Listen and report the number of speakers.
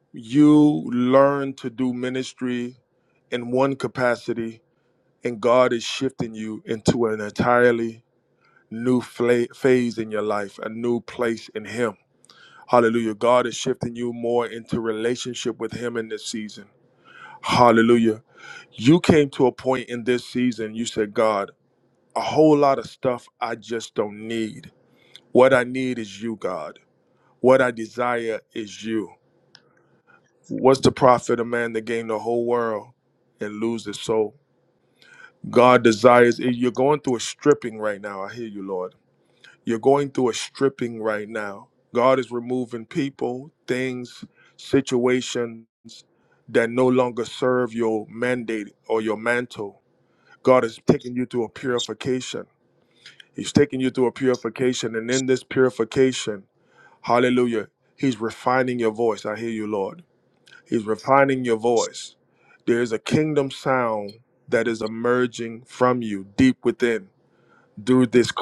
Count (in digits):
1